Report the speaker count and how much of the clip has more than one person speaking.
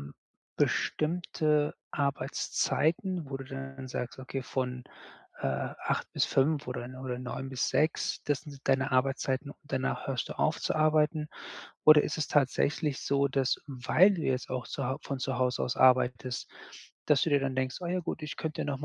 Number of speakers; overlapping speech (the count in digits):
1, no overlap